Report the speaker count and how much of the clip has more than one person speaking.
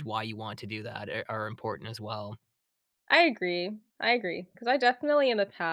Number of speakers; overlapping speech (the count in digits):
2, no overlap